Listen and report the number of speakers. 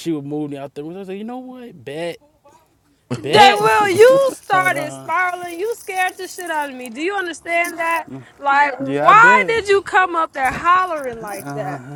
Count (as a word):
two